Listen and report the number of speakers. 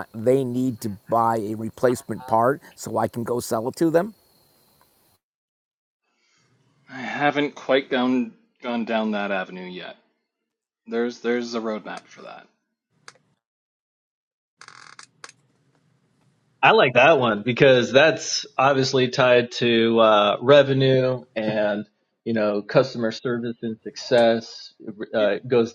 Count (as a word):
three